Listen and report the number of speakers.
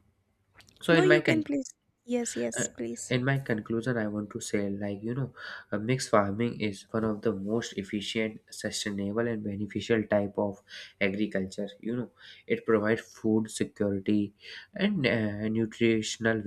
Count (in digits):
2